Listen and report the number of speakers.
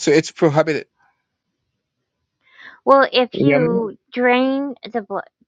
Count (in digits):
2